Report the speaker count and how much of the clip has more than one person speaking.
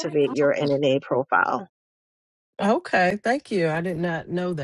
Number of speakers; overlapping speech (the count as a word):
two, no overlap